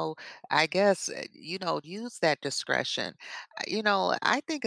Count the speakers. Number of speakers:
1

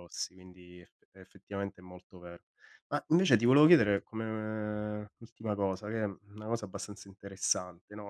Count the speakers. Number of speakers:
1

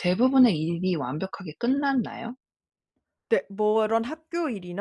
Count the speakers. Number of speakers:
2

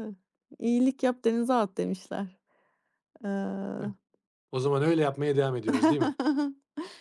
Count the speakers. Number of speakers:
2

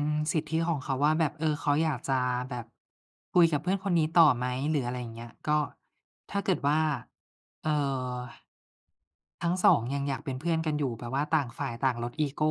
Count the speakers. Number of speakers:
1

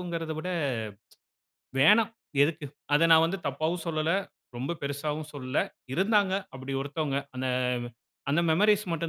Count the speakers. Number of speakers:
1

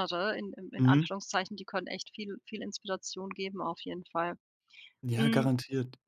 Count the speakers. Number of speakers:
2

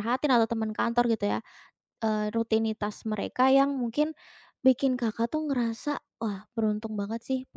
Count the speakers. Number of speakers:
1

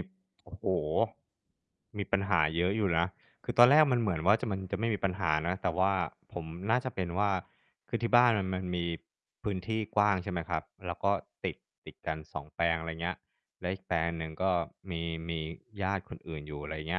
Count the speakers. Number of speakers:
1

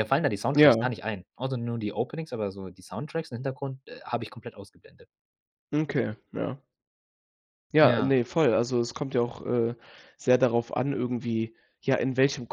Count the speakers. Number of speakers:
2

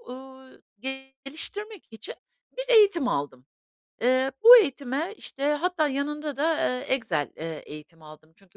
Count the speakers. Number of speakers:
1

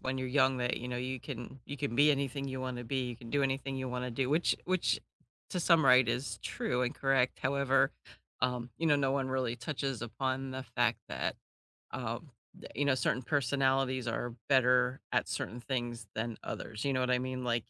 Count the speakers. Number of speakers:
1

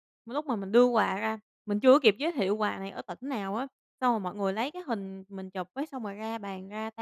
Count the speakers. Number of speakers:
1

